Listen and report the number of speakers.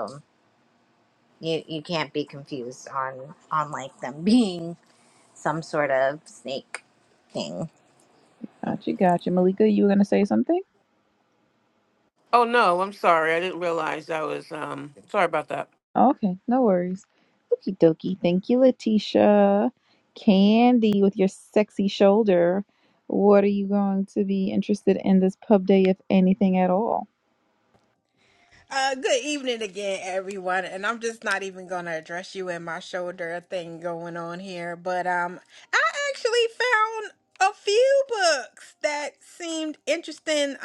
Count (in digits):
4